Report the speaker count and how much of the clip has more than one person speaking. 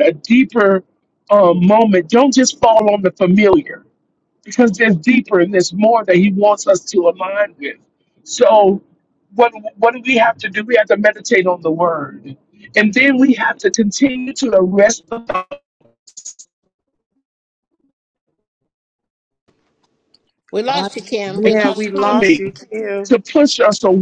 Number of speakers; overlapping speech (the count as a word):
three, about 6%